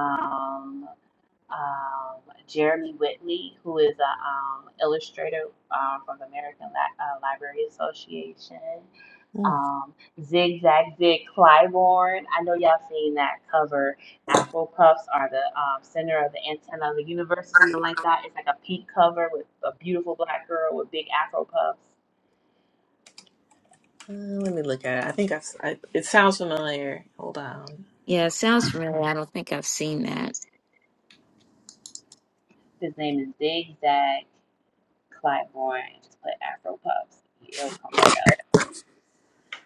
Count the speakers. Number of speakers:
three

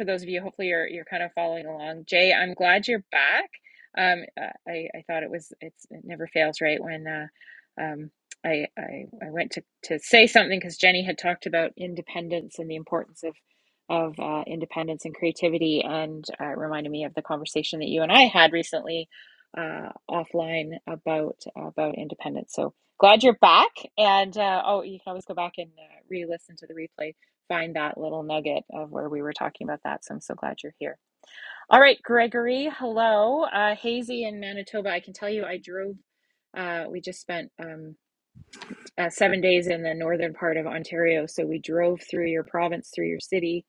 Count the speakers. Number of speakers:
one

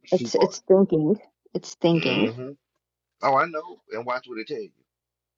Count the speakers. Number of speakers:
two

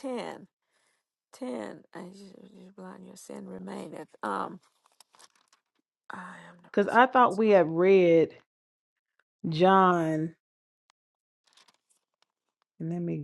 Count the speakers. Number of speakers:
two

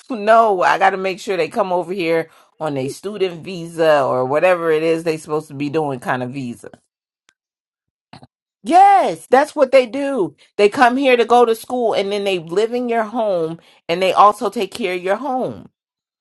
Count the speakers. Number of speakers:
one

